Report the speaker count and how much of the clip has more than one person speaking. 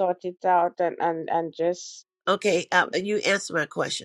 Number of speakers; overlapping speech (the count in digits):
2, no overlap